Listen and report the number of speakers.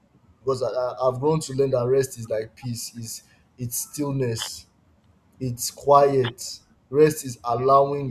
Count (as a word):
one